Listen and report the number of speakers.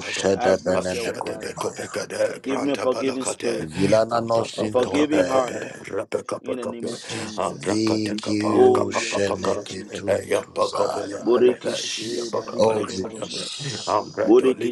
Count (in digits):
3